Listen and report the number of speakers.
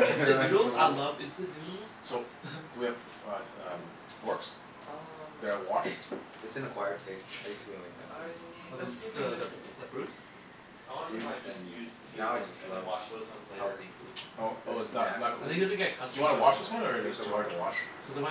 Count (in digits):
4